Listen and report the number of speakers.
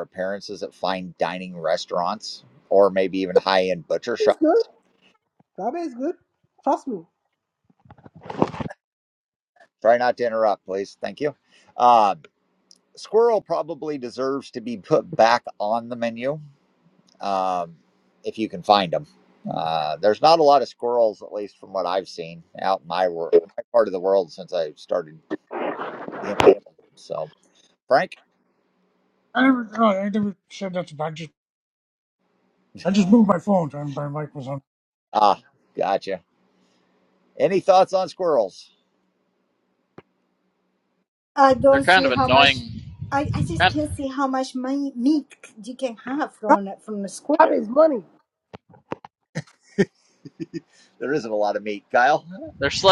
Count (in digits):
5